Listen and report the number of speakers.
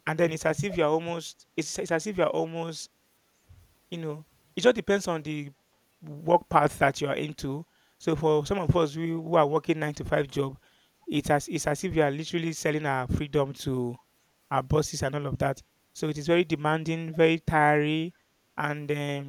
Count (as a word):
one